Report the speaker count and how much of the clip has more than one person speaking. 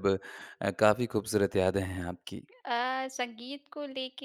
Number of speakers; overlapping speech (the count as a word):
two, no overlap